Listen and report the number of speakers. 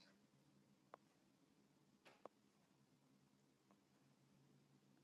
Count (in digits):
0